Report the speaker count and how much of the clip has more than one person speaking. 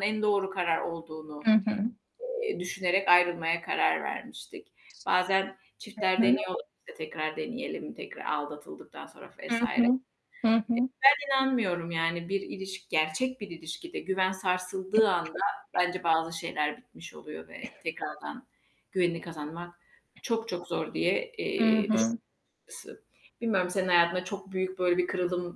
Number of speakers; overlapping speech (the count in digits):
2, about 3%